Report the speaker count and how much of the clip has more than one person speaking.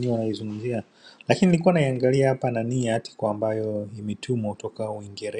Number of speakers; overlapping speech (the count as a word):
one, no overlap